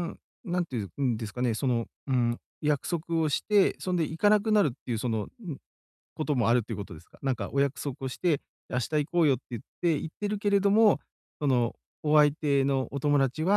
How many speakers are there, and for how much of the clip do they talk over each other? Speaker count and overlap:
one, no overlap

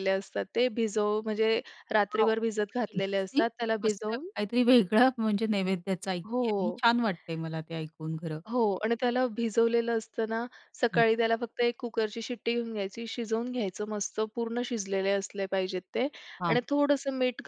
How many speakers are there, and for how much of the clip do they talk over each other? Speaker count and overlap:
two, about 11%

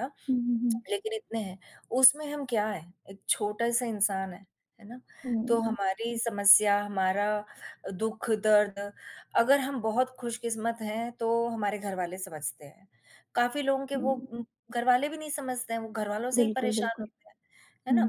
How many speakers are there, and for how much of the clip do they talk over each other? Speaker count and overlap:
two, about 9%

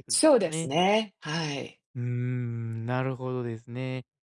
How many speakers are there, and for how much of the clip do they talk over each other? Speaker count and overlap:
two, about 13%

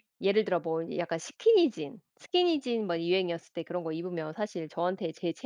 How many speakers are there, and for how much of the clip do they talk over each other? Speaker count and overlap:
one, no overlap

